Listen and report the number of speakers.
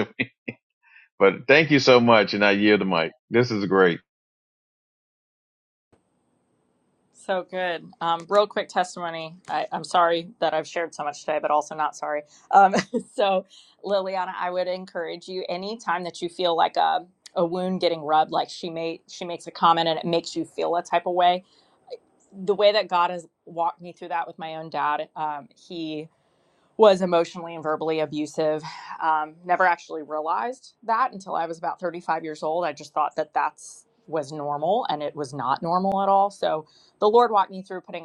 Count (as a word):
two